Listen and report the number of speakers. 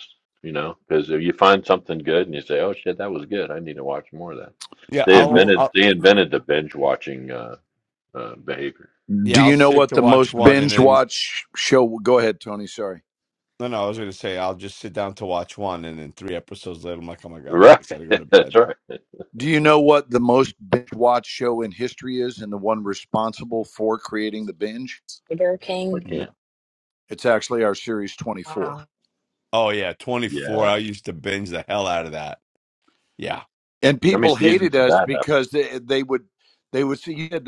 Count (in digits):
4